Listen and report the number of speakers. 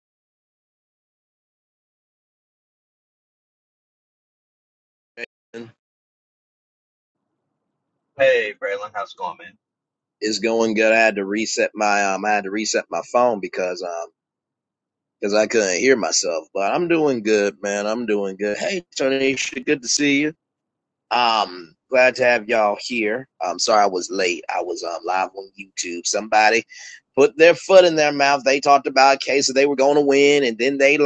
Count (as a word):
two